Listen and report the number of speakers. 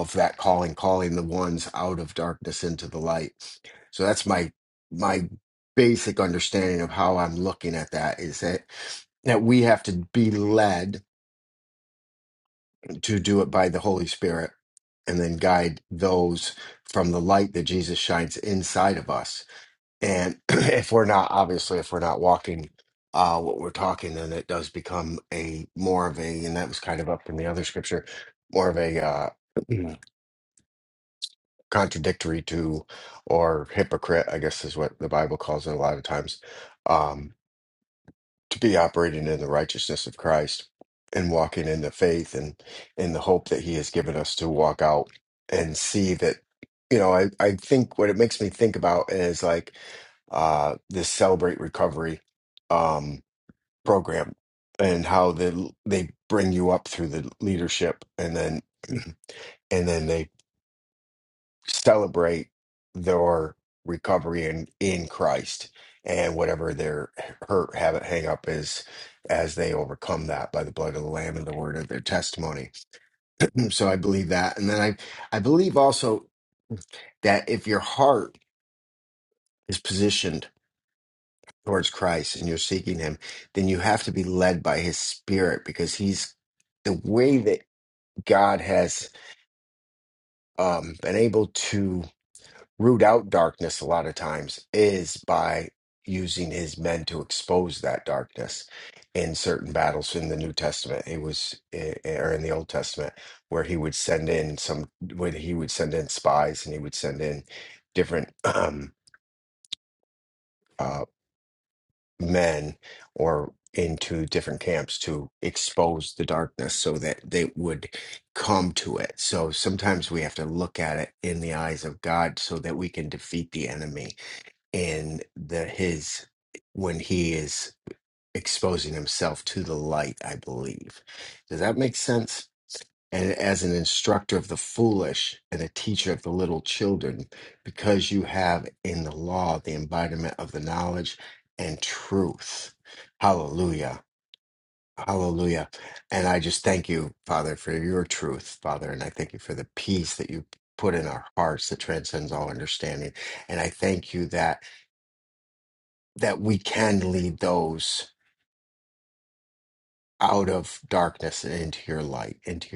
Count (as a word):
one